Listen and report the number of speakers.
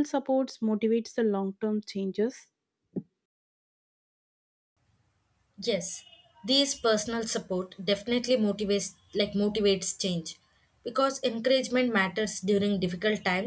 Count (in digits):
2